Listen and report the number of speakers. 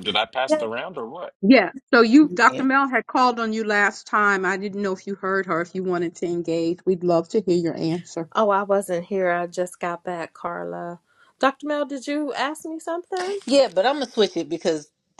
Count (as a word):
four